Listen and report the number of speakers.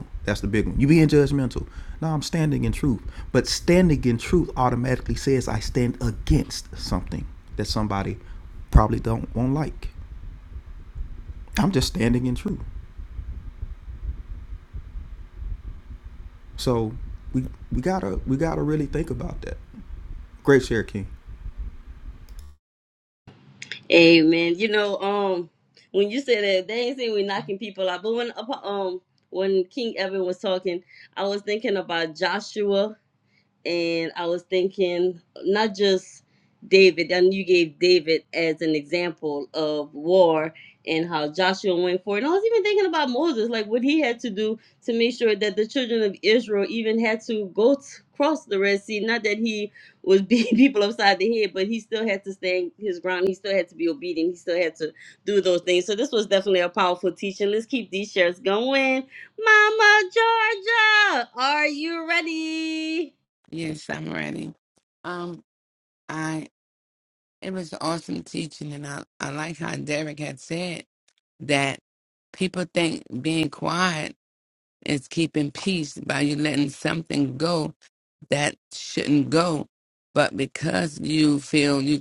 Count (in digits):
3